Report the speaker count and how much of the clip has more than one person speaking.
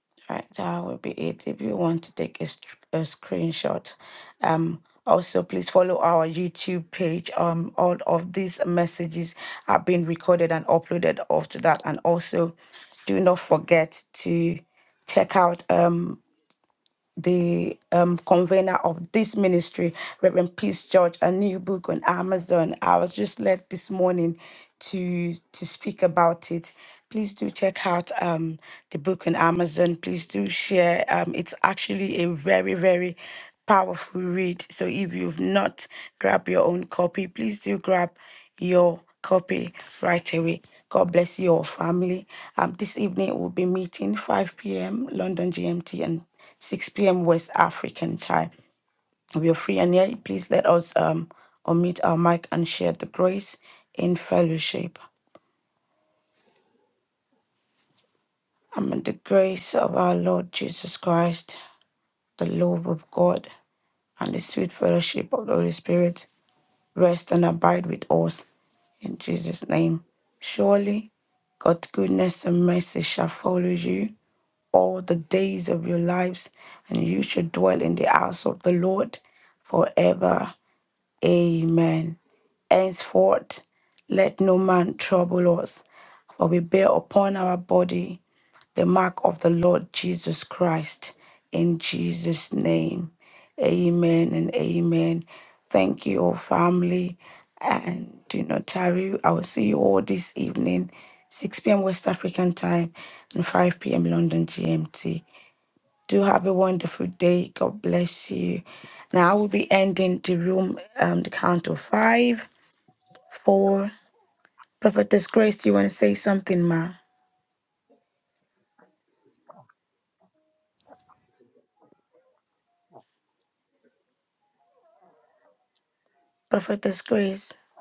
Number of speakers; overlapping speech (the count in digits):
1, no overlap